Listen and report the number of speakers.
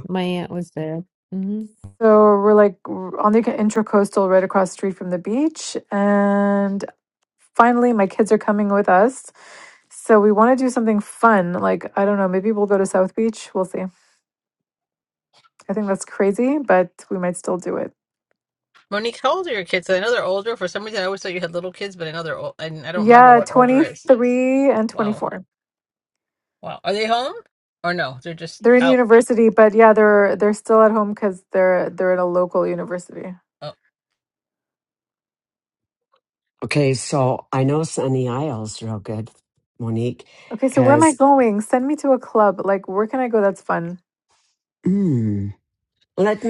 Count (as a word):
four